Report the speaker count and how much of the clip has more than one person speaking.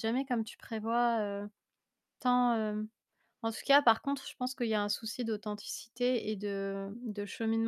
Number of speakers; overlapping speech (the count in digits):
1, no overlap